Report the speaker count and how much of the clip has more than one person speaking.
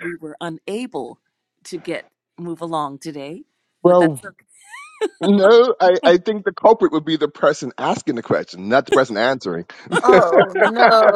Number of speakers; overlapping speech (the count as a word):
three, about 3%